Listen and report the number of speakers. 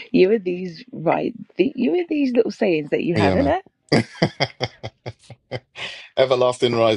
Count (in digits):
2